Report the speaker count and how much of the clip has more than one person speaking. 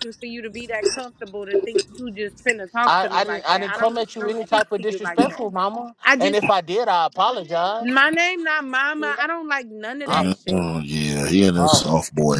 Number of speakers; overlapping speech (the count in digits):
3, about 29%